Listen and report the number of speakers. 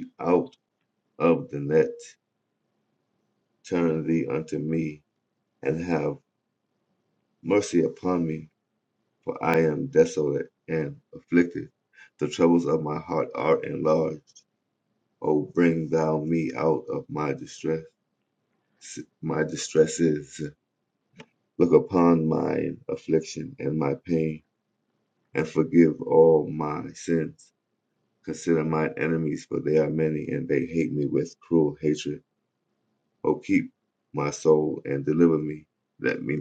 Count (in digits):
1